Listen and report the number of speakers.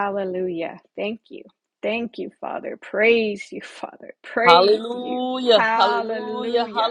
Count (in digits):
2